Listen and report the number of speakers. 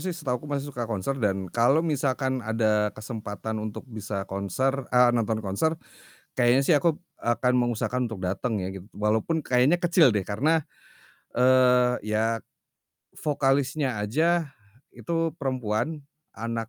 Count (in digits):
1